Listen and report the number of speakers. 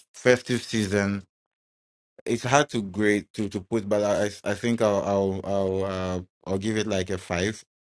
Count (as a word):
one